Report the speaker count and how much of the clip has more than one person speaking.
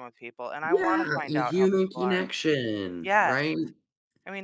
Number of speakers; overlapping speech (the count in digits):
2, about 44%